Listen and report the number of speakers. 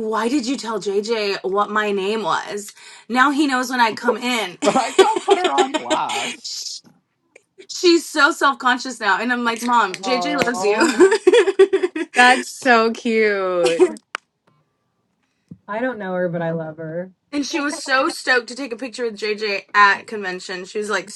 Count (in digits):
3